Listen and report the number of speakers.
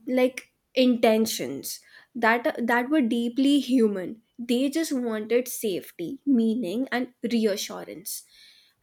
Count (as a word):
one